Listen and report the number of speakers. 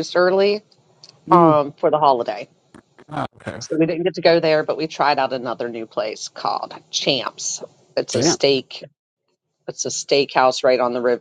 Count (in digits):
2